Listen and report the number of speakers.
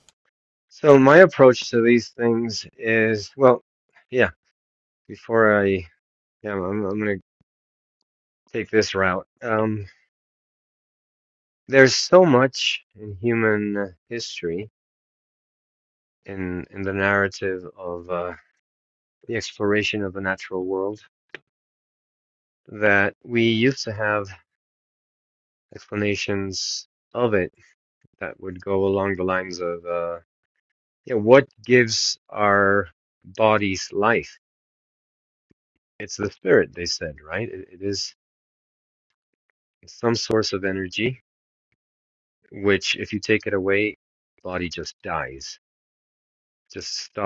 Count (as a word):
one